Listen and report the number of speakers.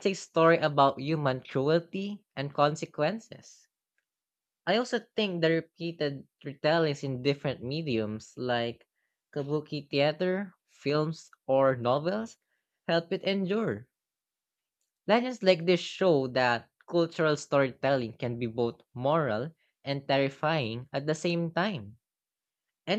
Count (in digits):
1